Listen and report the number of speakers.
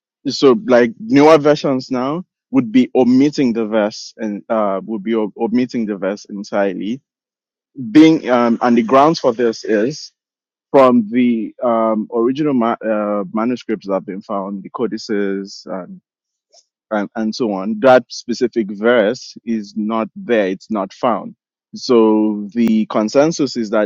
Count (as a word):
one